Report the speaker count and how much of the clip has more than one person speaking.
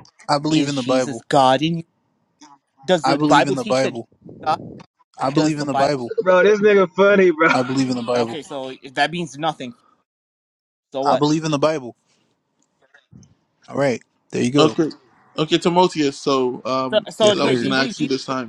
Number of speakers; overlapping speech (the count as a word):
four, about 22%